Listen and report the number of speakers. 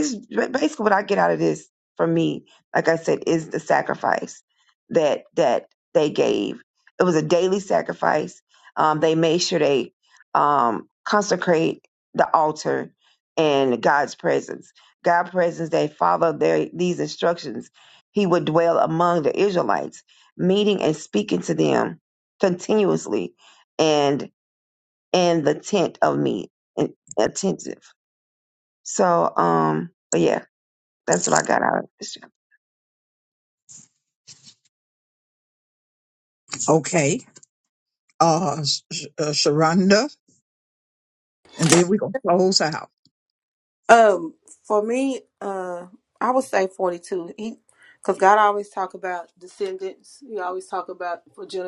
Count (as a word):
three